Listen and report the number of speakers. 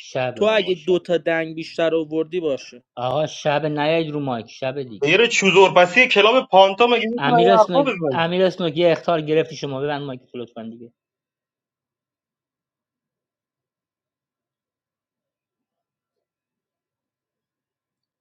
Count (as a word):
three